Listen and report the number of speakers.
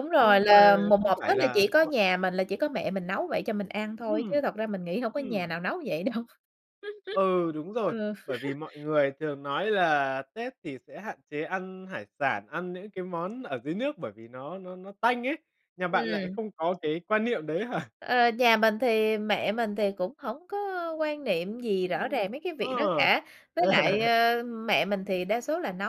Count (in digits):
2